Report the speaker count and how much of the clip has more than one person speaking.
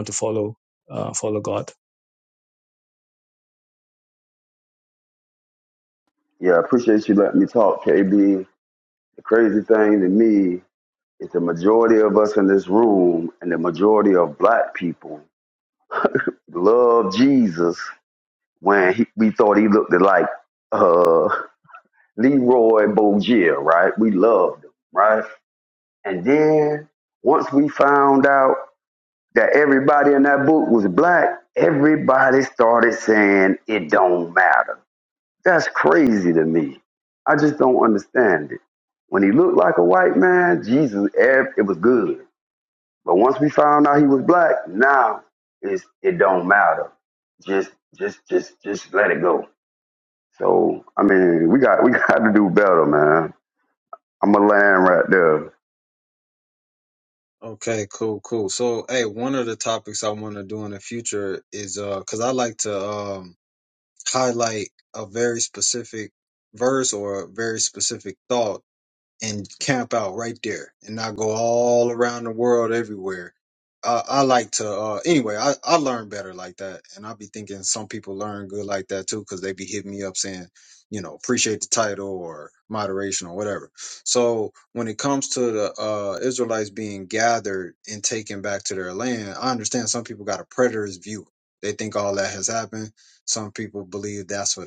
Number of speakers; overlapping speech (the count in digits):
3, no overlap